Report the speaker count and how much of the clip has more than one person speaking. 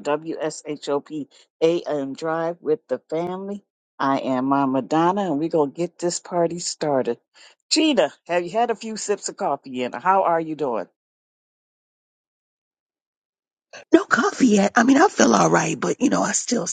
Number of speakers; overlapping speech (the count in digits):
2, no overlap